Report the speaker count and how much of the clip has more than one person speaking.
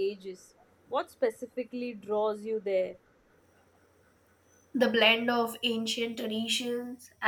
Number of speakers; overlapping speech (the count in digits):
2, no overlap